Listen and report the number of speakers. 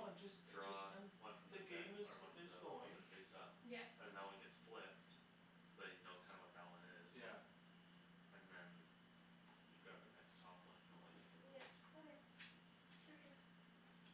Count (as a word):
three